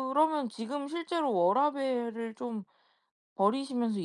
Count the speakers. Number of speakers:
one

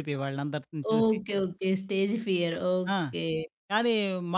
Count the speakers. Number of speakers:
two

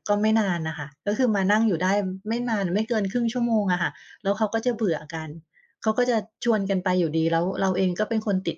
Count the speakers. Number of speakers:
one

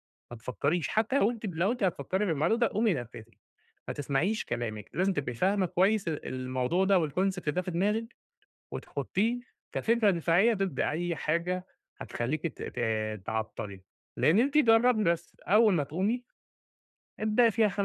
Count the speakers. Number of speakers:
one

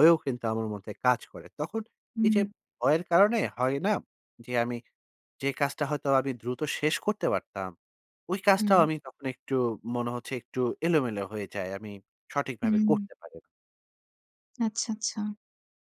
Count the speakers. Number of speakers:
two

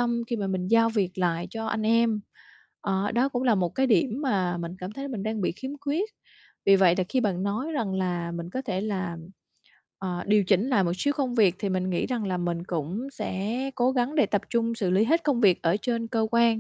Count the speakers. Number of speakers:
one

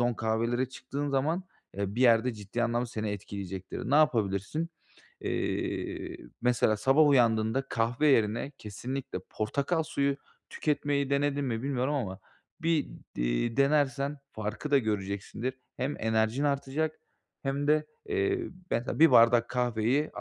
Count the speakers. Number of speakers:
one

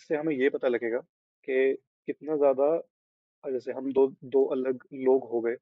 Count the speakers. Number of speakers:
one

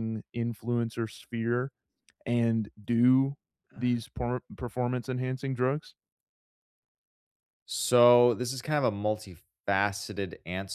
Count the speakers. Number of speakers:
two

